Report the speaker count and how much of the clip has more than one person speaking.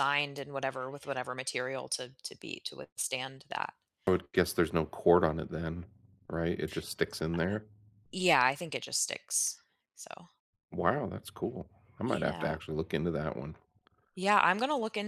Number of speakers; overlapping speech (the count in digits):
2, about 5%